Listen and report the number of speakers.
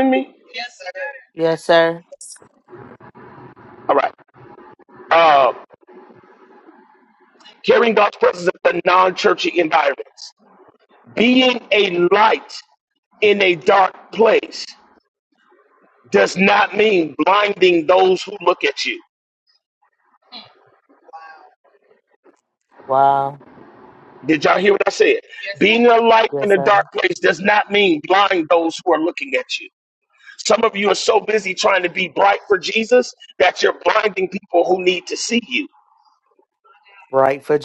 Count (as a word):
two